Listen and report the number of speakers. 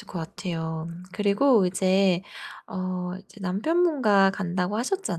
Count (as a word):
one